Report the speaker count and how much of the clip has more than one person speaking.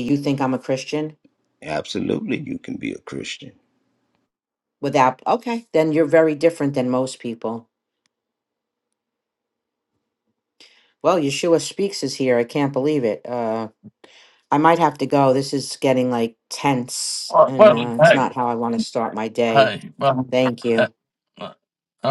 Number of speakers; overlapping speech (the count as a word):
three, about 5%